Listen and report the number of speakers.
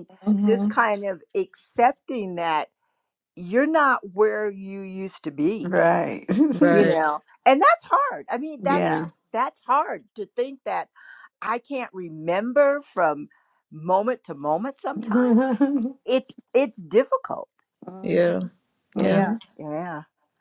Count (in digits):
3